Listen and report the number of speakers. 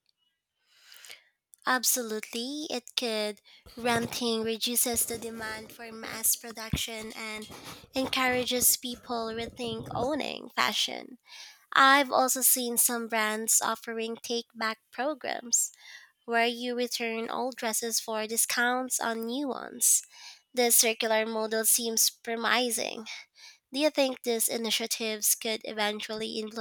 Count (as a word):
one